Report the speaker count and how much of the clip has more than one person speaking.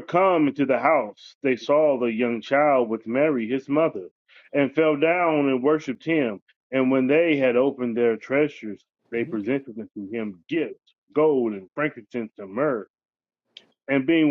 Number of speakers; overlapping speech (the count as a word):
one, no overlap